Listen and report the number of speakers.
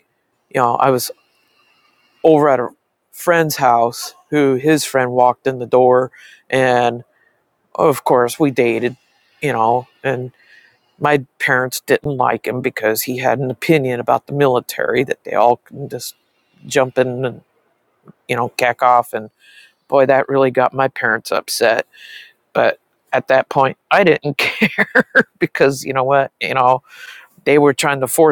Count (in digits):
1